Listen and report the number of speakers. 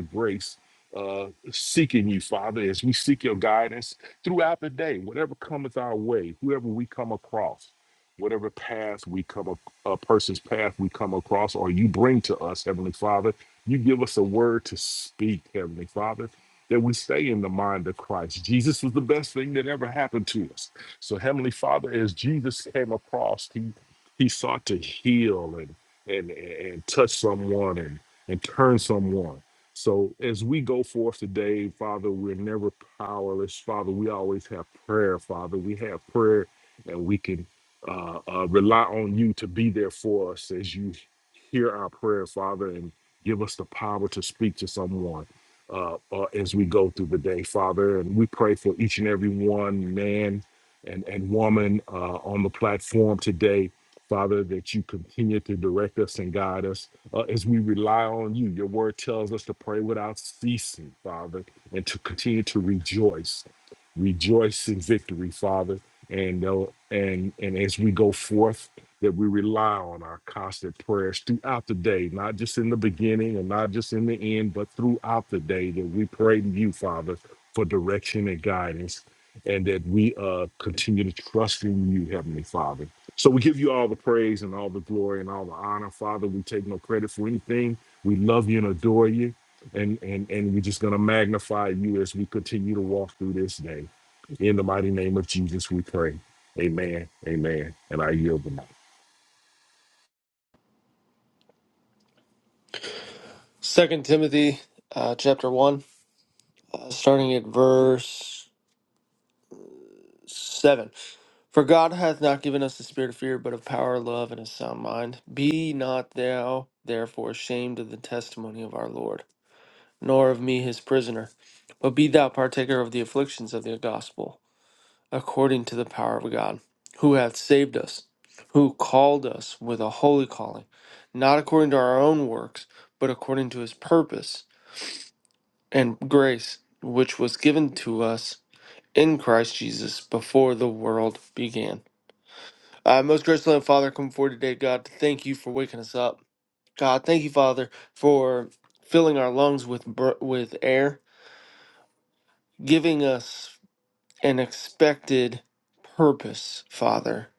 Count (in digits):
2